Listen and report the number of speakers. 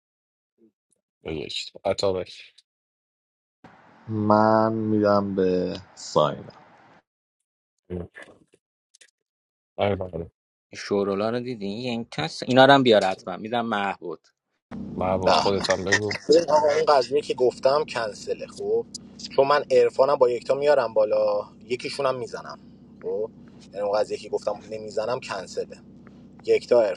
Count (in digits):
4